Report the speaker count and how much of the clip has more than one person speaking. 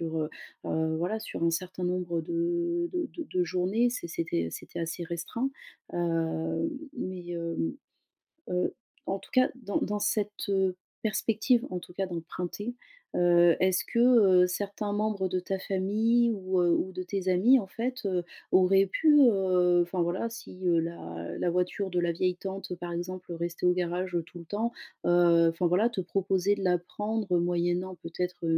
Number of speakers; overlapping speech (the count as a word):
one, no overlap